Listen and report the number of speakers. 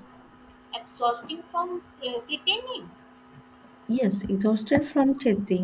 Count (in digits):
2